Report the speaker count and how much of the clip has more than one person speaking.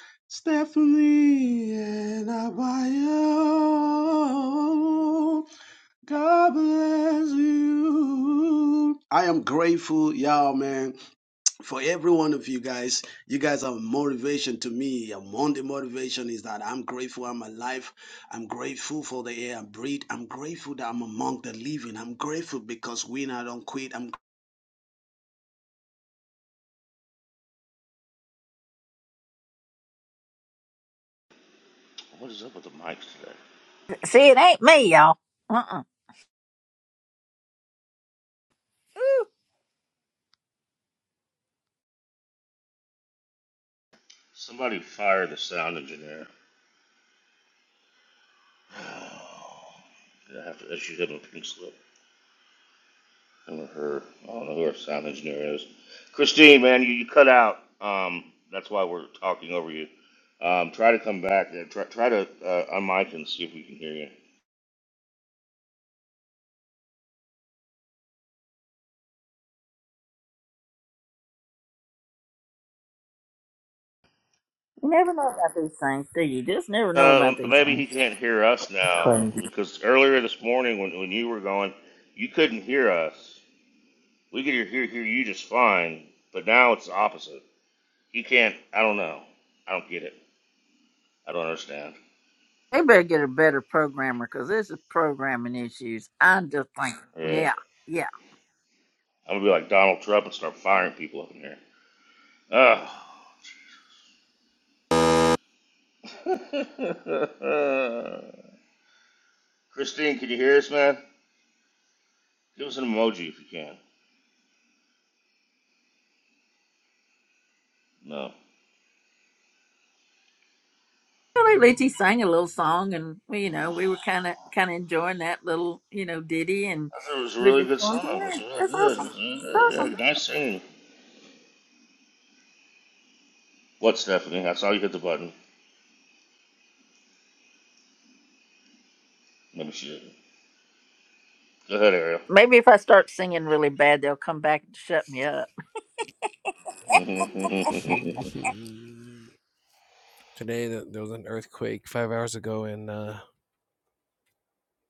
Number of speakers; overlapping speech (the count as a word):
four, about 3%